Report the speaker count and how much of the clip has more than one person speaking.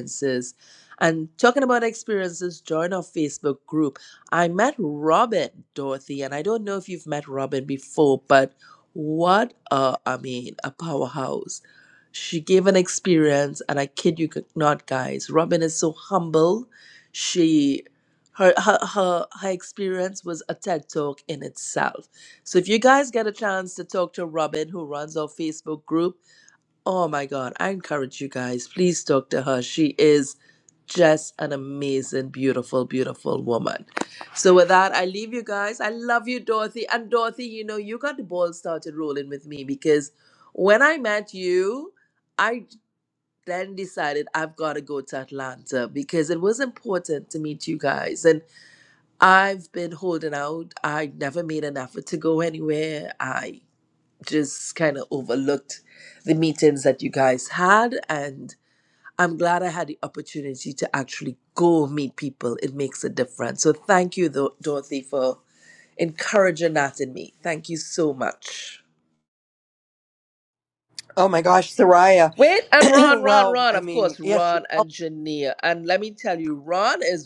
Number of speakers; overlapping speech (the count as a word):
two, about 2%